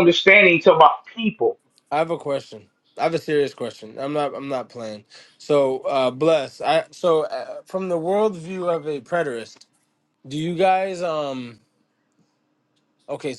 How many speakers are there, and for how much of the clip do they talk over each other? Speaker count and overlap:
two, no overlap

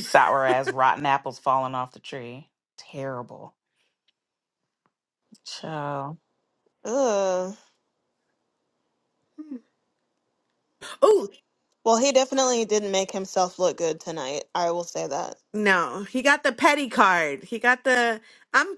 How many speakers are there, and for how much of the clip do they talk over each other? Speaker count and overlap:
three, no overlap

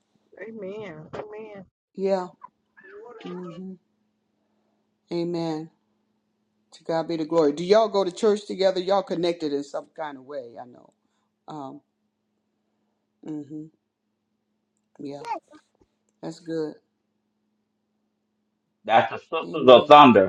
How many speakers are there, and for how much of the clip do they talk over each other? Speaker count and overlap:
three, about 2%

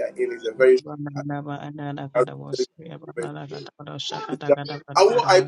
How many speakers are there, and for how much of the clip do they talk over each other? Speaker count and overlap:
two, about 27%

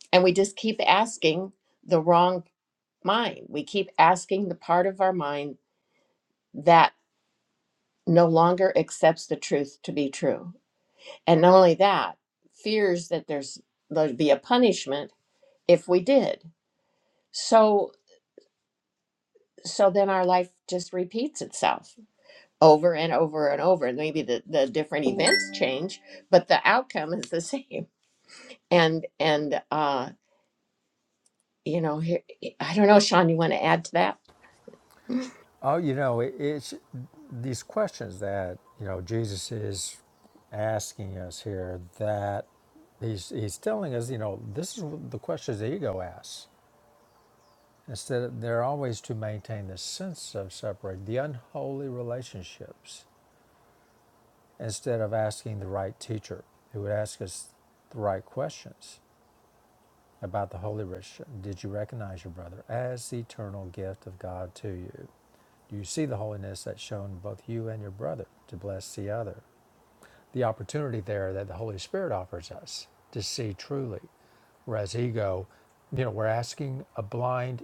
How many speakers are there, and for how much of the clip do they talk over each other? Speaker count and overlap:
two, no overlap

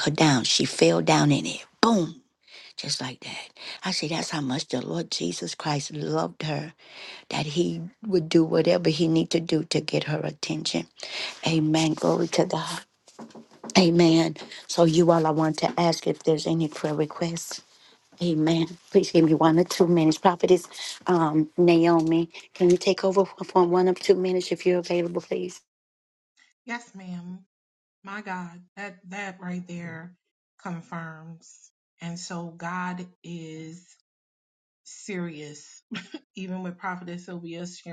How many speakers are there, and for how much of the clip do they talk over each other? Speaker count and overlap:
two, no overlap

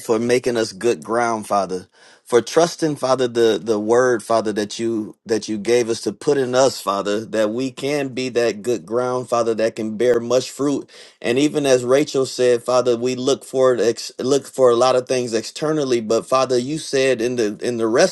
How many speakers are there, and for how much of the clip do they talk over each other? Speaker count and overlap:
one, no overlap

